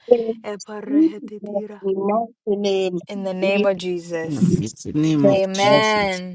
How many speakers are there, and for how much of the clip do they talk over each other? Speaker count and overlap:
three, about 39%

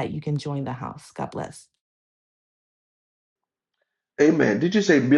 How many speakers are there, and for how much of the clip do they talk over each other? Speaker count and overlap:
two, no overlap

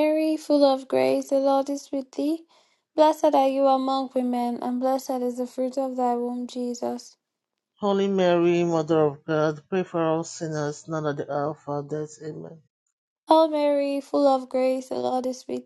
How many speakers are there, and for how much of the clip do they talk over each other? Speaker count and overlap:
two, no overlap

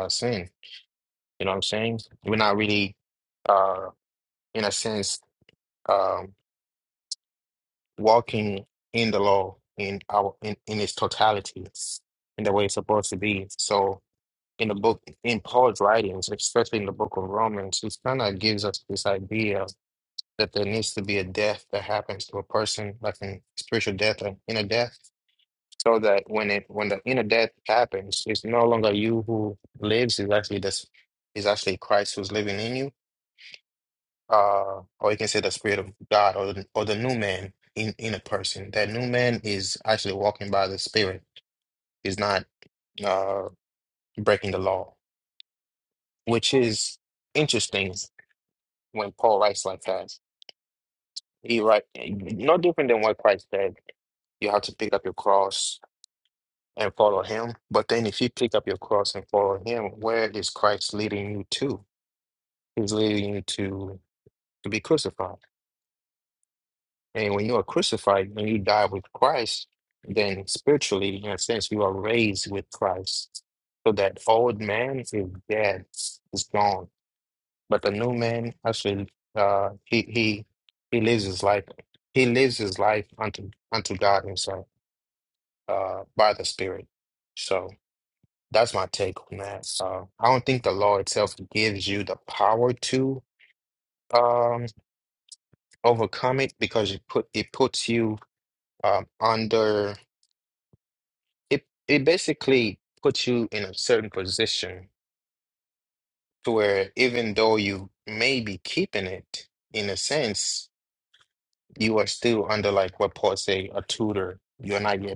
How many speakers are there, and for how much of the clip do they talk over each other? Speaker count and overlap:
one, no overlap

